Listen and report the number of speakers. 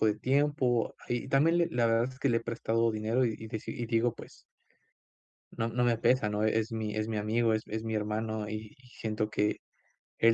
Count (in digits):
1